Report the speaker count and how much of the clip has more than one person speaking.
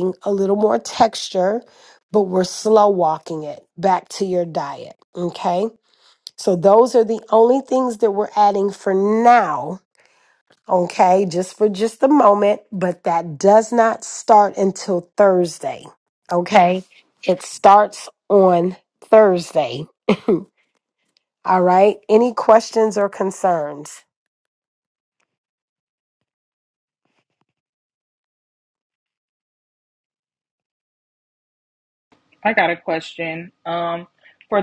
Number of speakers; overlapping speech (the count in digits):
2, no overlap